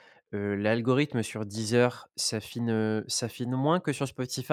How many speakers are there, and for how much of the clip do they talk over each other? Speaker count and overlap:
1, no overlap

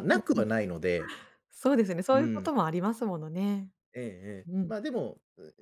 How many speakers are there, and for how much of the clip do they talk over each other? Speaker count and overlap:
2, about 15%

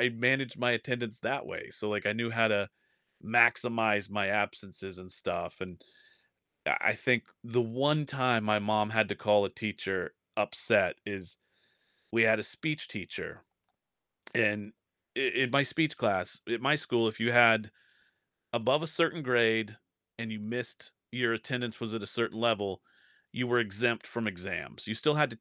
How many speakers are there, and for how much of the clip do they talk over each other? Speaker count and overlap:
1, no overlap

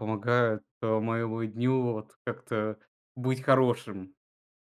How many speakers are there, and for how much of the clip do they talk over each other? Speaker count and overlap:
1, no overlap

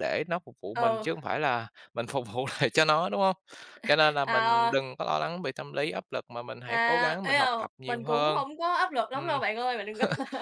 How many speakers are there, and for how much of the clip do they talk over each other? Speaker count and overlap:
2, about 28%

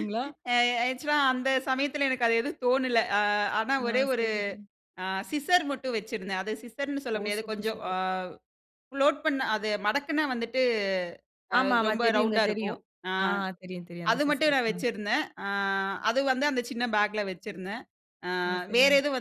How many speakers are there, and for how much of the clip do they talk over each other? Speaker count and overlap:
2, about 18%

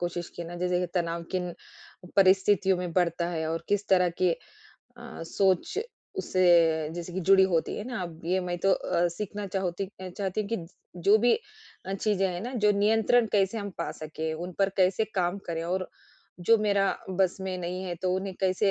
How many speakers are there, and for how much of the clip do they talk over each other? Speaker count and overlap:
1, no overlap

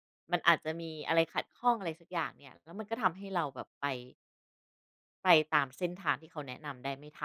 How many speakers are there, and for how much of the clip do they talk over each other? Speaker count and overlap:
1, no overlap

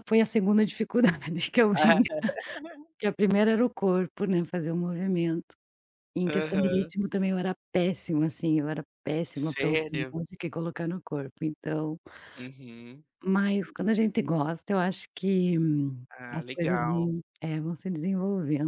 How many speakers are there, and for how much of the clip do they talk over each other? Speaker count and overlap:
2, about 11%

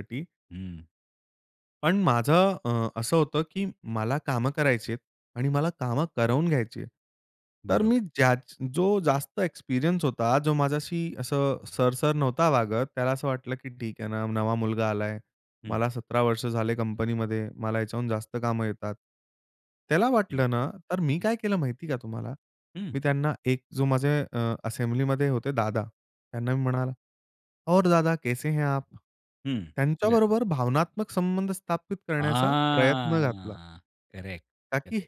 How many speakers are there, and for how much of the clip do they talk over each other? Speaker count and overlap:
2, about 5%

